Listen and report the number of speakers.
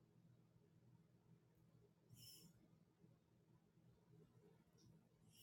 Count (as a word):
zero